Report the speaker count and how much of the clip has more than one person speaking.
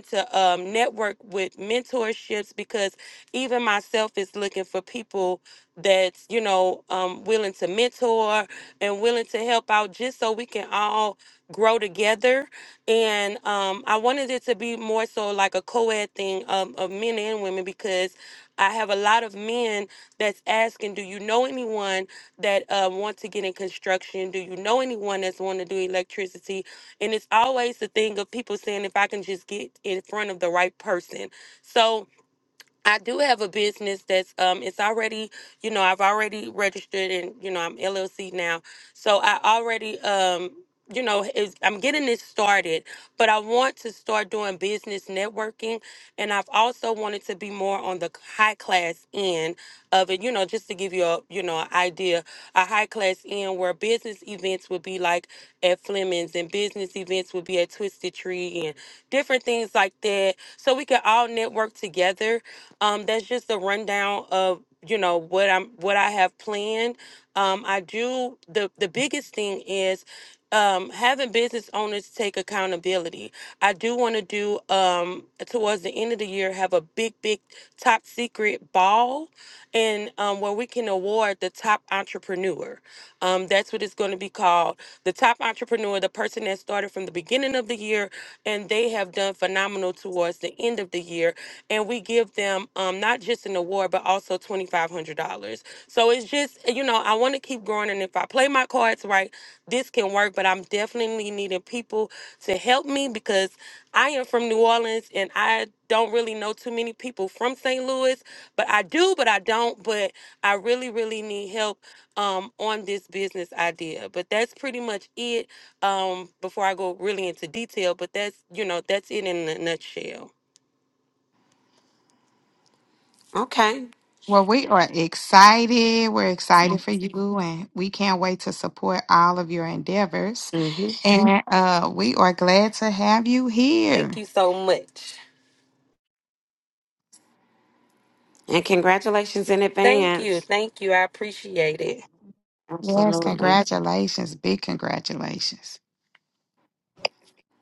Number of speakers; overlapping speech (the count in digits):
3, about 1%